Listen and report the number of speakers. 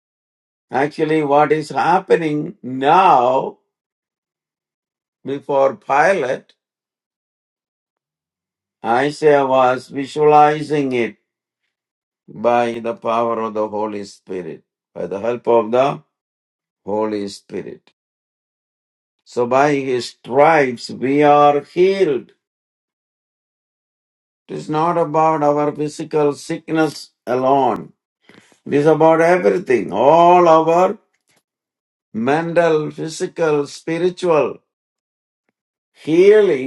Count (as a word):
one